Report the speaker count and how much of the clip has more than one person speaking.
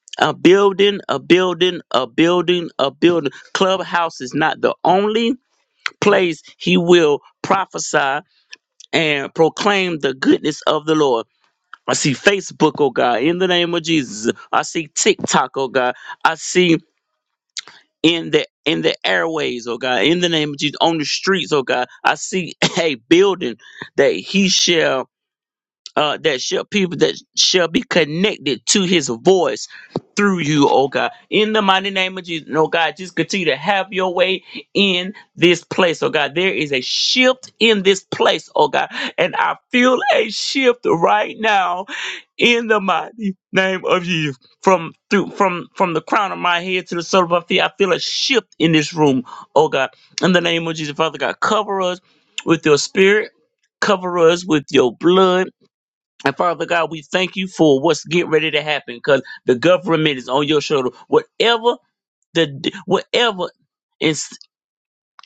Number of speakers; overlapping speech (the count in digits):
1, no overlap